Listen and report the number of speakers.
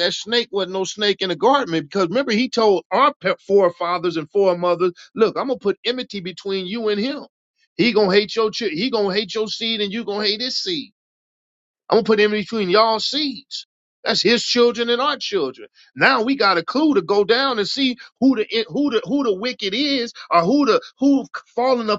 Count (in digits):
1